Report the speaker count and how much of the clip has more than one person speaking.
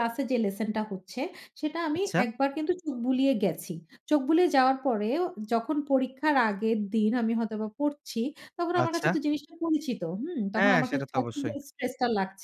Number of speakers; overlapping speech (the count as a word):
two, about 9%